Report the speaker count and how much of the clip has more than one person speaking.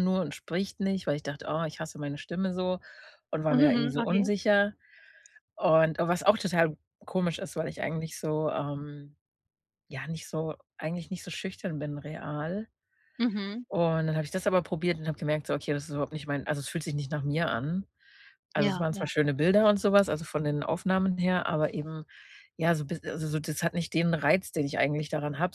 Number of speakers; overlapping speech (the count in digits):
2, about 5%